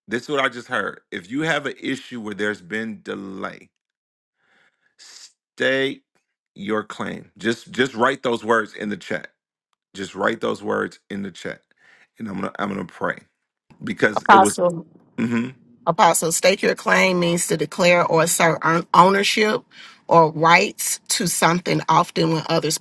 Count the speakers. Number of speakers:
two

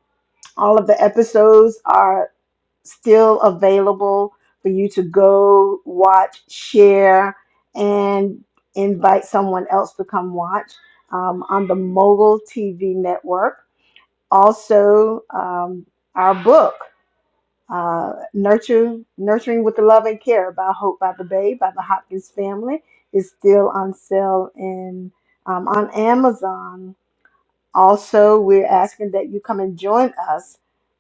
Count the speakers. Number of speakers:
one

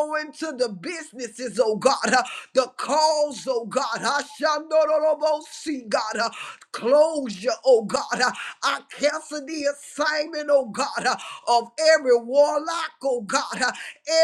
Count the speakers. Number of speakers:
one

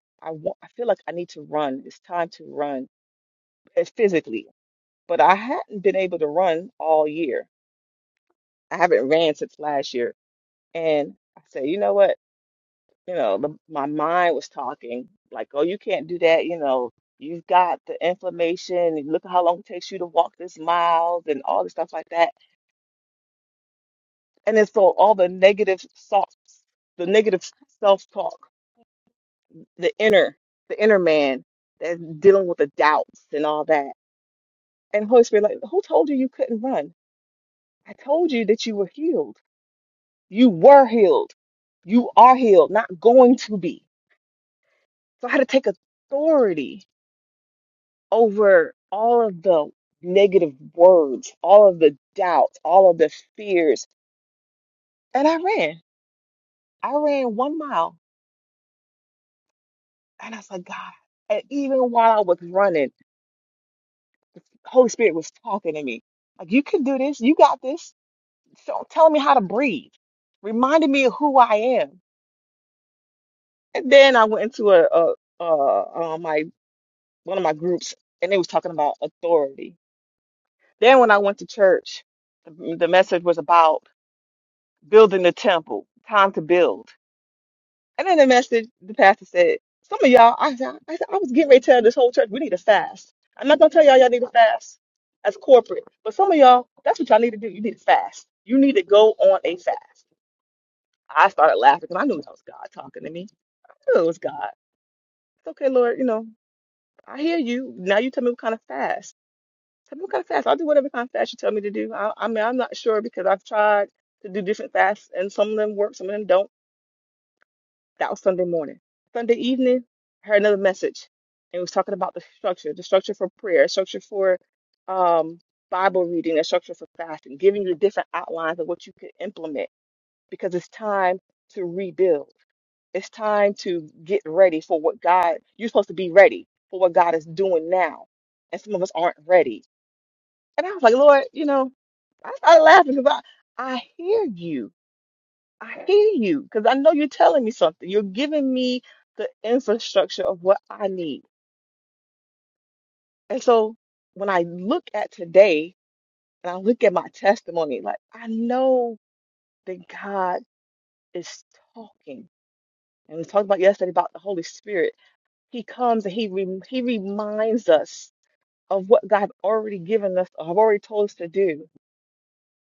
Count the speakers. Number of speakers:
one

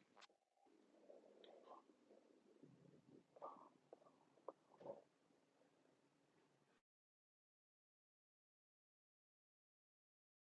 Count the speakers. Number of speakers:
zero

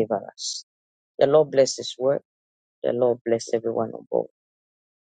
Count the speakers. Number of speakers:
one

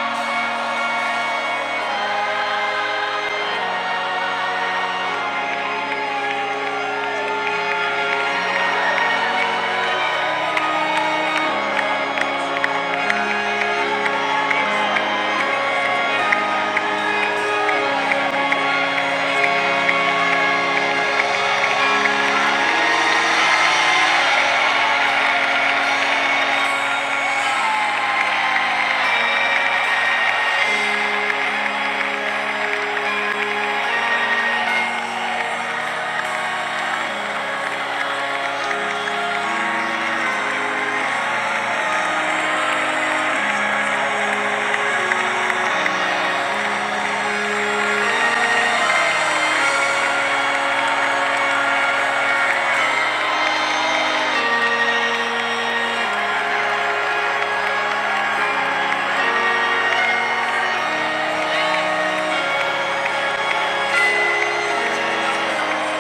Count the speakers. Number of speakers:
zero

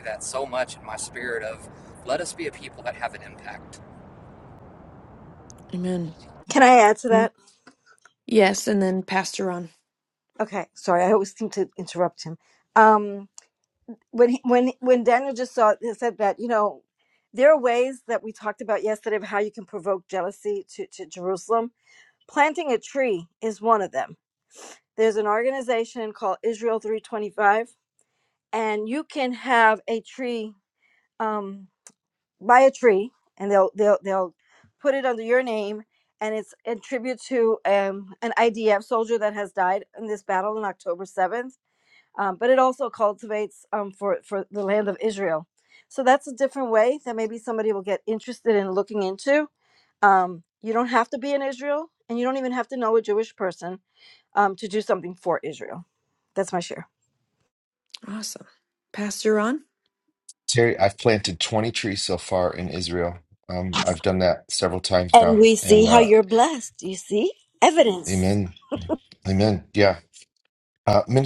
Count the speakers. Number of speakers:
four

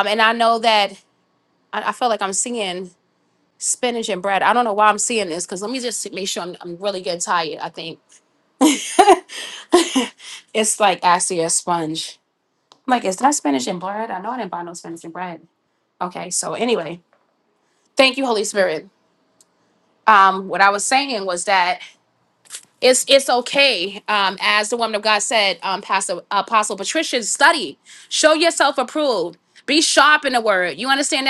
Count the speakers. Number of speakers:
one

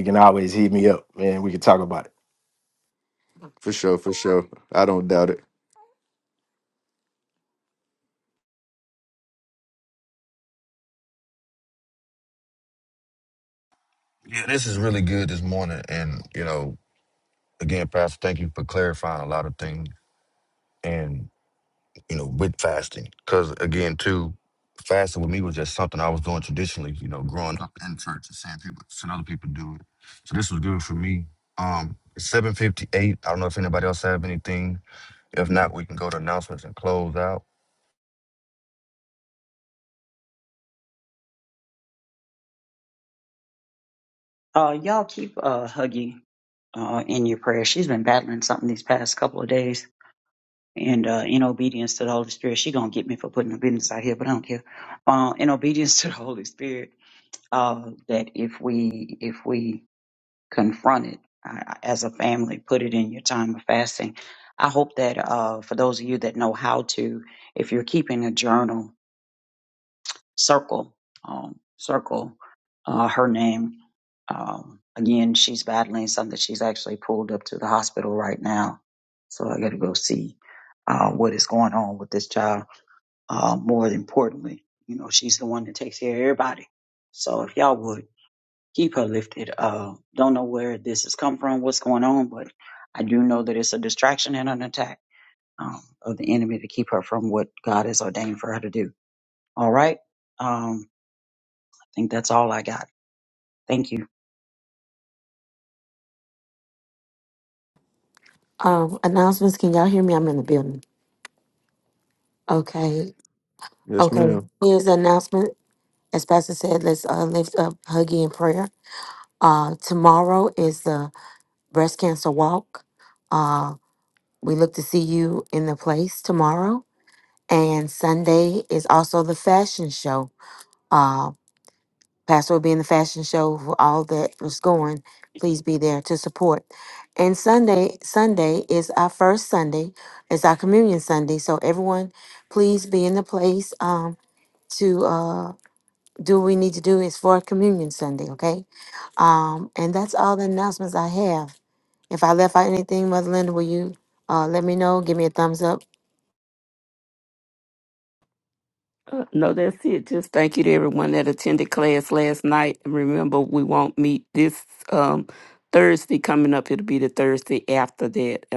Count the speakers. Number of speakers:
six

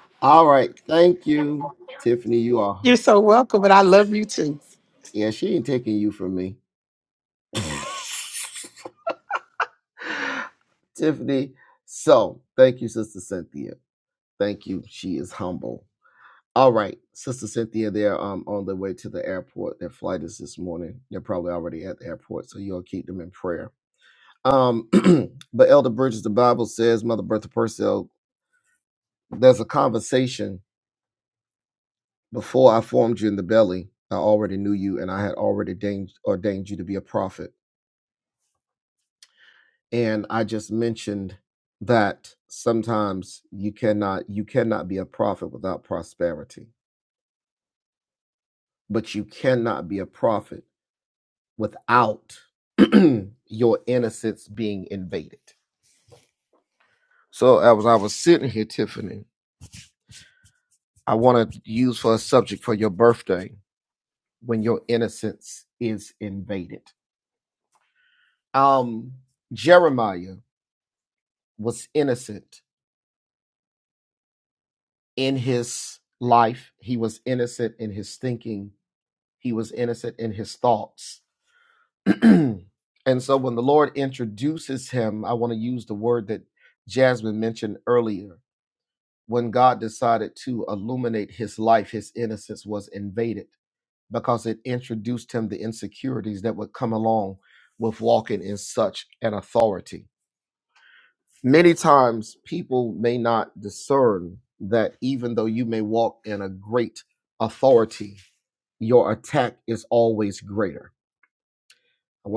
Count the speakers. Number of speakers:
two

